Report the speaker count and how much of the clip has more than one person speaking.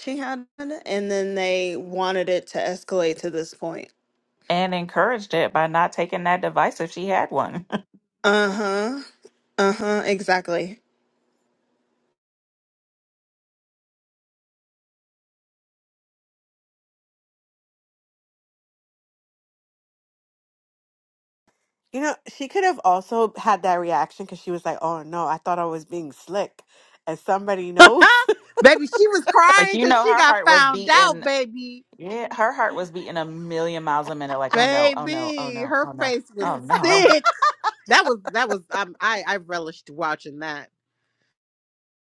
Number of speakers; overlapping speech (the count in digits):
4, about 9%